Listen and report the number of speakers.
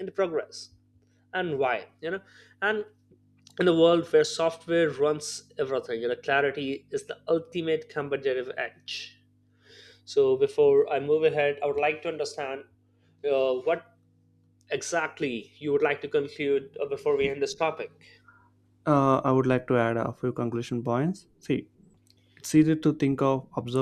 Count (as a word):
two